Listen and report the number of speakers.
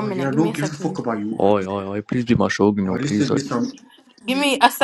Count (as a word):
three